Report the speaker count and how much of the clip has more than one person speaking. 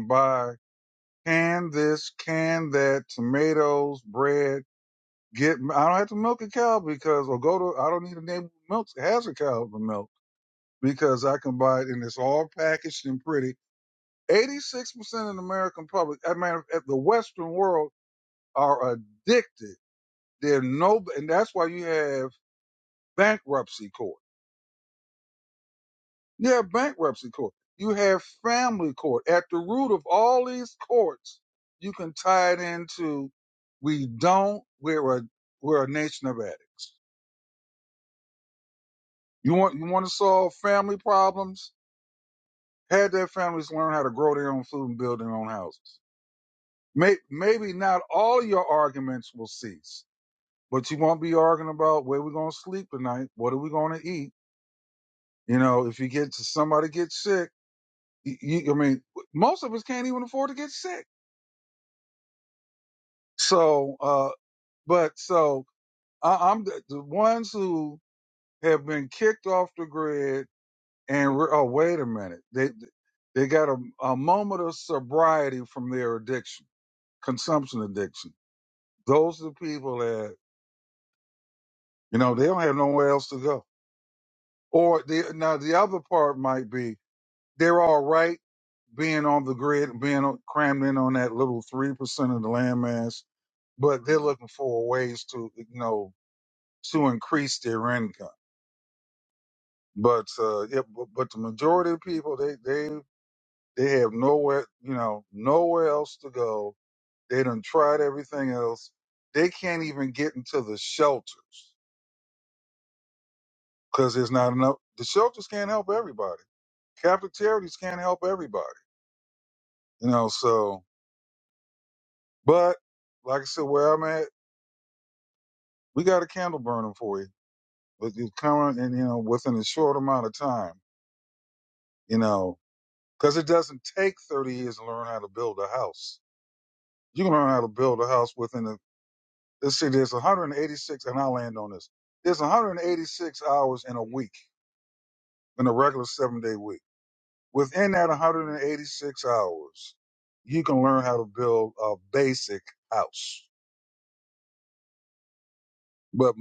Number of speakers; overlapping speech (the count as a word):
one, no overlap